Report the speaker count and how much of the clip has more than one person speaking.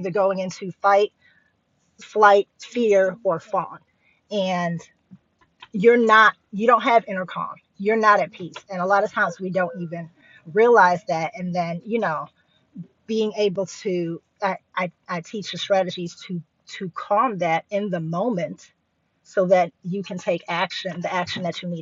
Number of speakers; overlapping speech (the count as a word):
one, no overlap